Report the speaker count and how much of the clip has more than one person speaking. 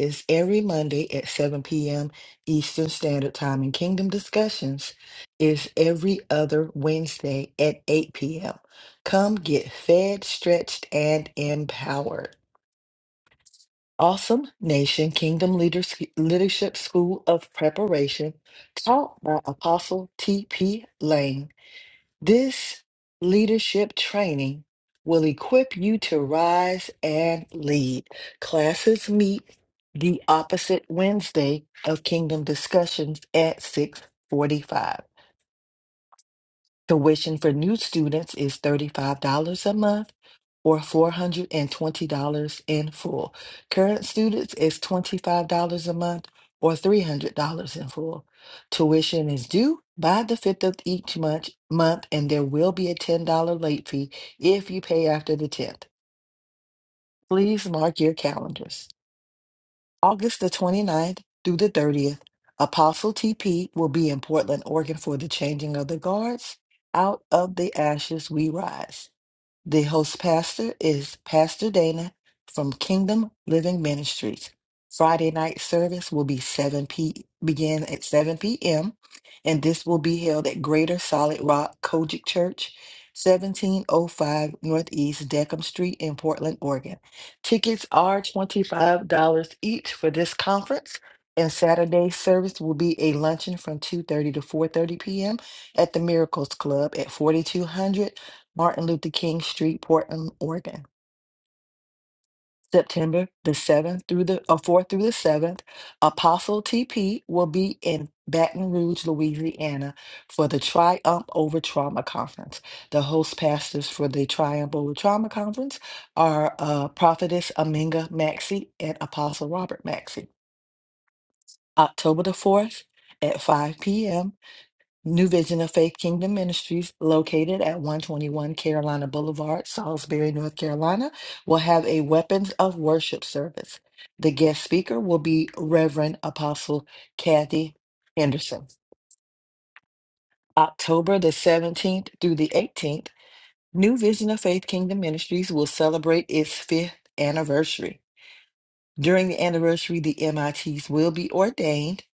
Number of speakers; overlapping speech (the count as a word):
one, no overlap